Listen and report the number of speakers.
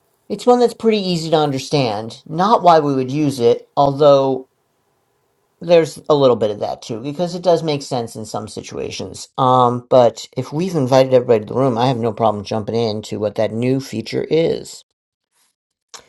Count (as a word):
one